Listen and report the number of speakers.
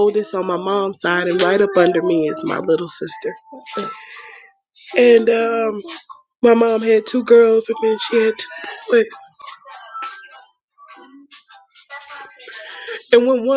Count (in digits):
1